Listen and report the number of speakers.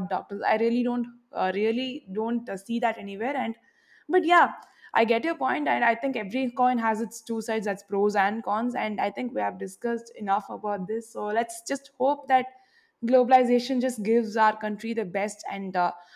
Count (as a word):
one